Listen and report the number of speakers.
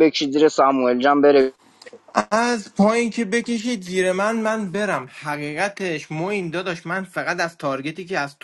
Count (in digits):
2